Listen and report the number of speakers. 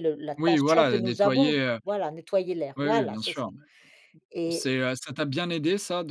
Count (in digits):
2